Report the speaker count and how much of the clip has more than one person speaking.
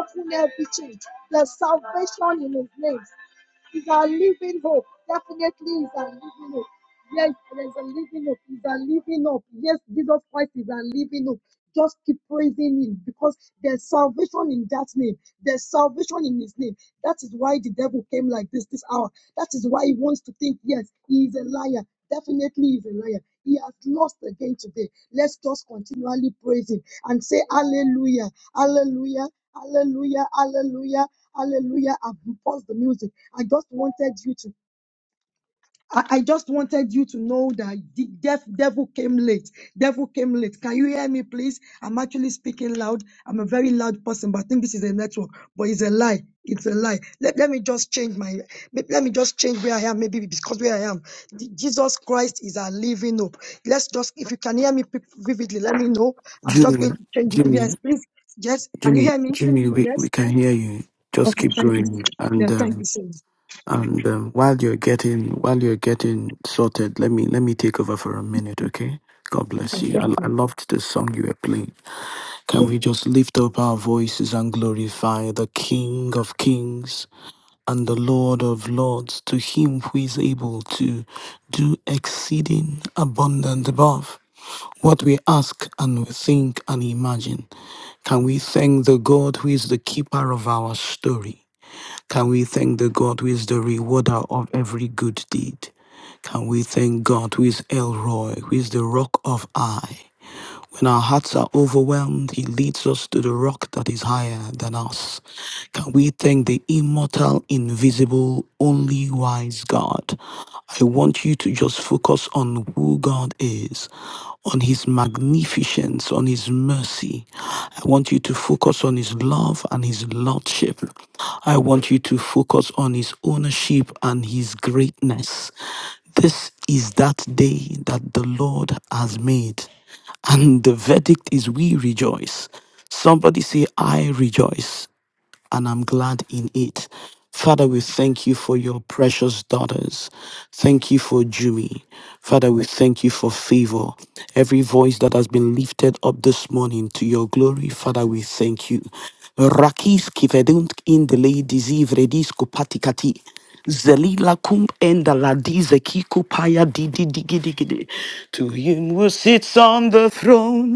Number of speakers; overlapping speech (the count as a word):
two, about 2%